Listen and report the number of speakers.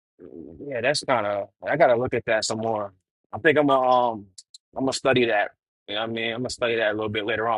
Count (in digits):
1